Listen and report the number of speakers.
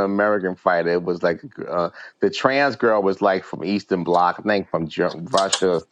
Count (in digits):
1